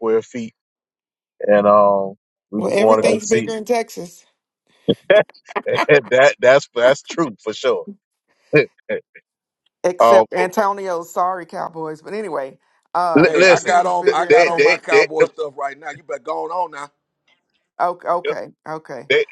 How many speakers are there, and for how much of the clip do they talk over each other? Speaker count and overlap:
3, about 17%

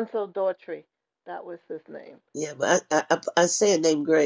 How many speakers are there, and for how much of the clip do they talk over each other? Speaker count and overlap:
2, no overlap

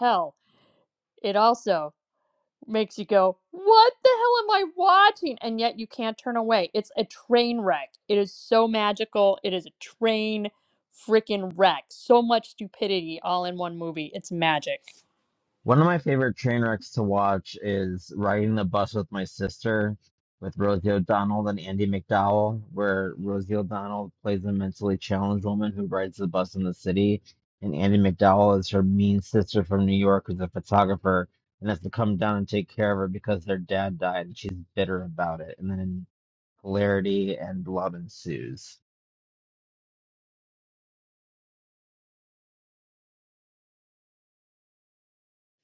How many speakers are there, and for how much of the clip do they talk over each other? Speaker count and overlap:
2, no overlap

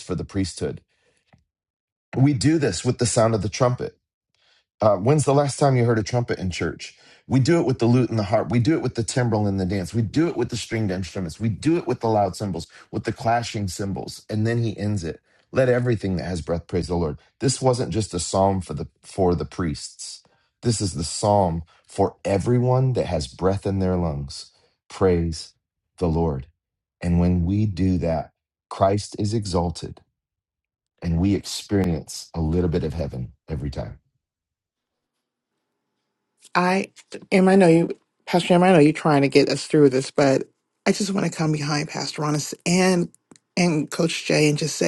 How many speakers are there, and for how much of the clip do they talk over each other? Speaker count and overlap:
2, no overlap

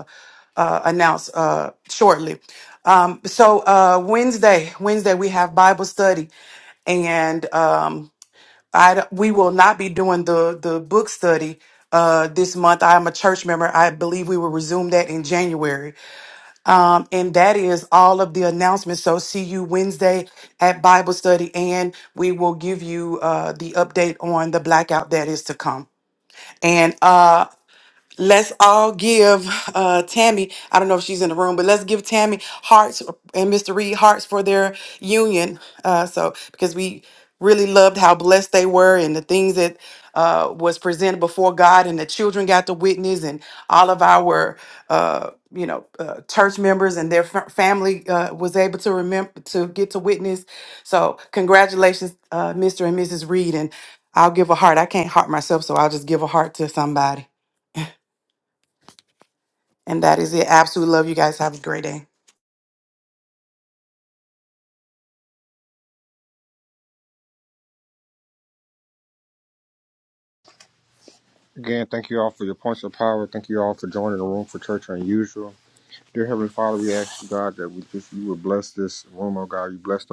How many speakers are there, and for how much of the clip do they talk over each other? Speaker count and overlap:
2, no overlap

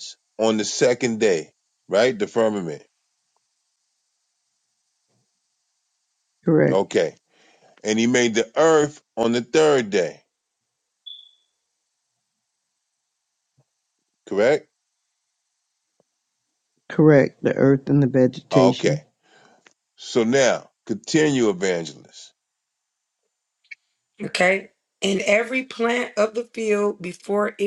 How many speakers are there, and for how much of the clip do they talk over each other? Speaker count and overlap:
3, about 2%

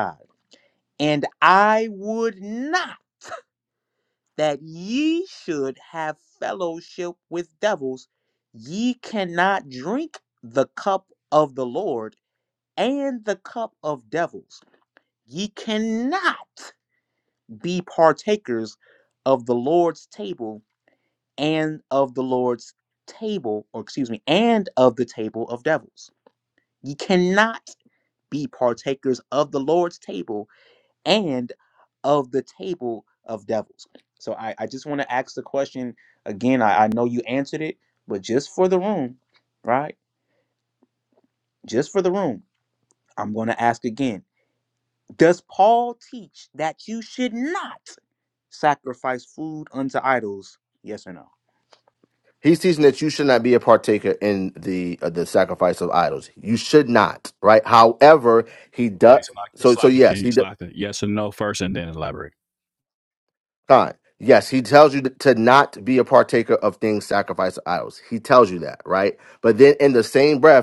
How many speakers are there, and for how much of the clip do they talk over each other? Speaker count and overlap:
3, about 1%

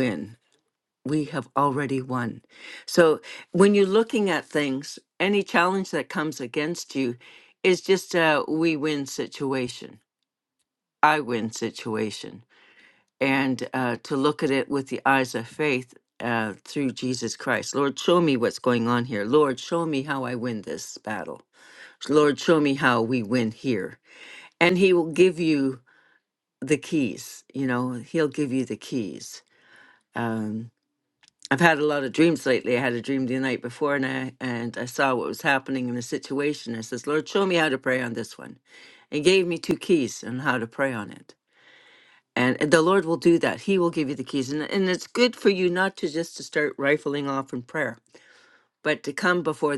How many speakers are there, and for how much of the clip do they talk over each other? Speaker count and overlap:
1, no overlap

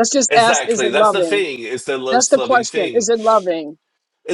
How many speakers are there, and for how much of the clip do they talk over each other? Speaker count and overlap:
2, about 48%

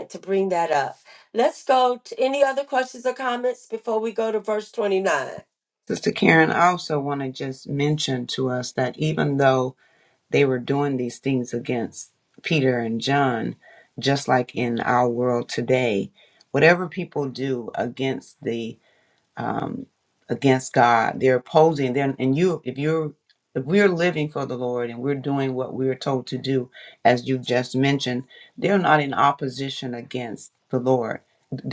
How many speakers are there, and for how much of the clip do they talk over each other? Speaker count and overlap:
2, no overlap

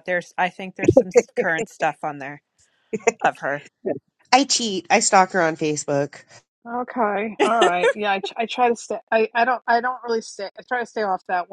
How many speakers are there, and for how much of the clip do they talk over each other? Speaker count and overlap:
3, no overlap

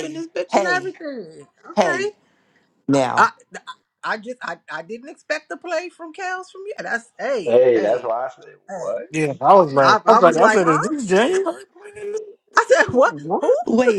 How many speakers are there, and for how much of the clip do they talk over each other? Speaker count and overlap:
4, about 25%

